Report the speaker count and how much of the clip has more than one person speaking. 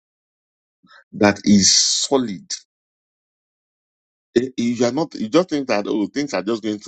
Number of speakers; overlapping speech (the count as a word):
one, no overlap